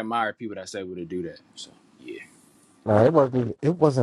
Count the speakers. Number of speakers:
2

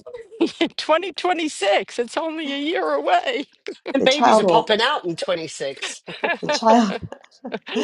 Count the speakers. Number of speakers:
3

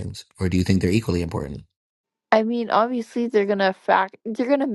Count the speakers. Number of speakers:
2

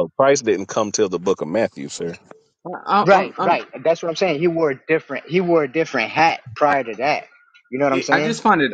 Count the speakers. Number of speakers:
3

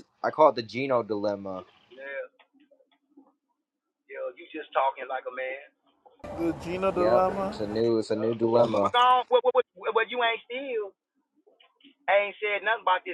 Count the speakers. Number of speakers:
3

